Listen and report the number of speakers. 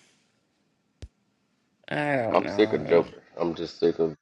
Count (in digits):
2